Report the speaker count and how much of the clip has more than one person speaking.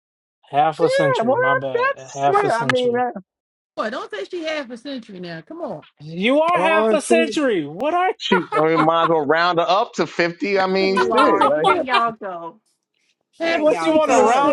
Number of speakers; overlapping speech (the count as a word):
four, about 32%